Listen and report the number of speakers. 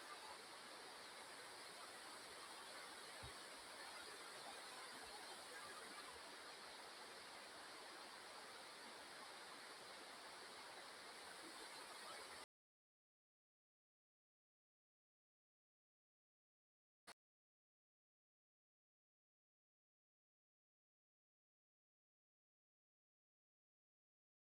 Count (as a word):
zero